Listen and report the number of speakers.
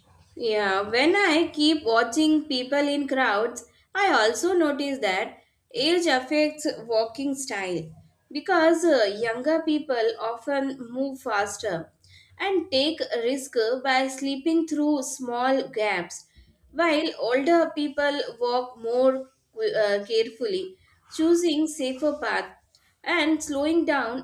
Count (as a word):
one